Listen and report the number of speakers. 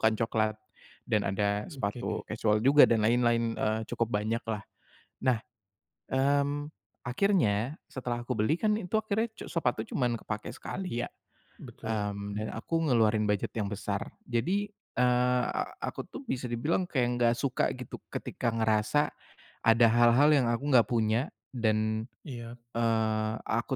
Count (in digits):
2